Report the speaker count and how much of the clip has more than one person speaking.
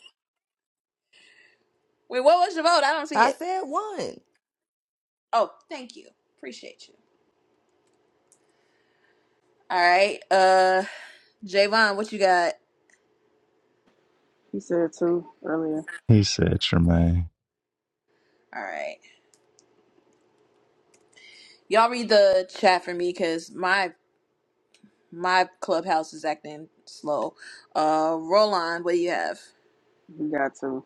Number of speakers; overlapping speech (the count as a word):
four, about 1%